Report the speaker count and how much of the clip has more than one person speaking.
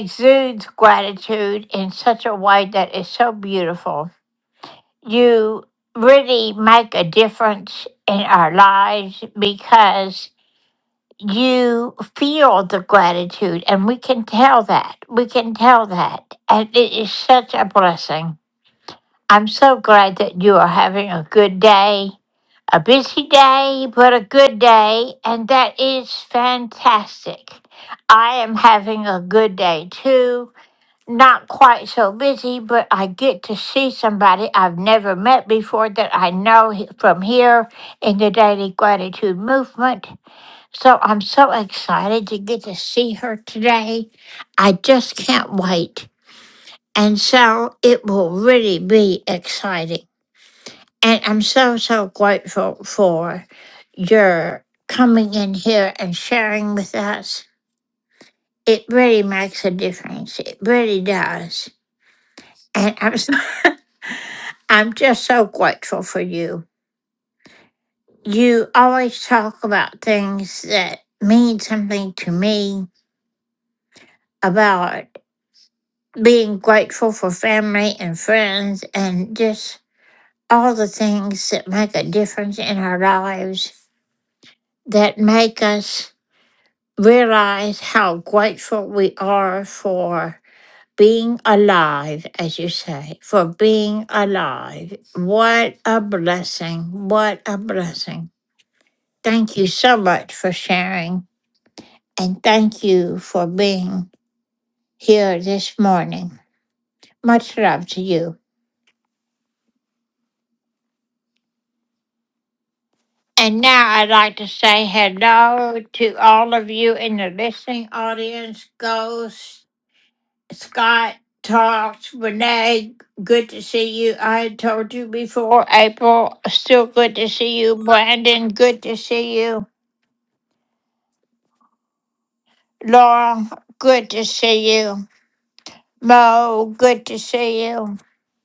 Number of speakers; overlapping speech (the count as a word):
one, no overlap